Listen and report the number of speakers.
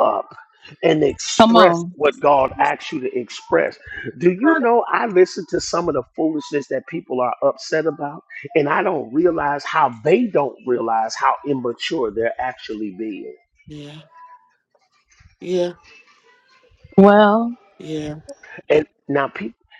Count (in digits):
3